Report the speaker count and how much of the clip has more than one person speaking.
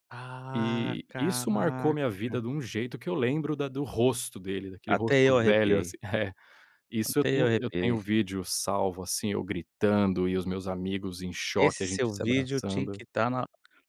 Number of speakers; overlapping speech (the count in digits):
2, about 34%